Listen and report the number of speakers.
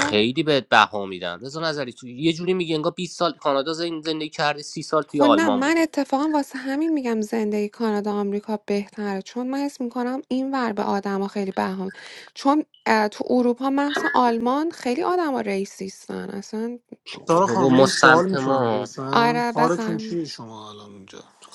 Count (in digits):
3